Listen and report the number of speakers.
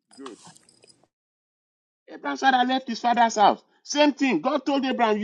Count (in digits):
1